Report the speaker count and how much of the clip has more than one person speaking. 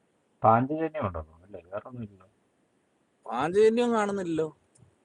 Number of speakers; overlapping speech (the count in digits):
2, no overlap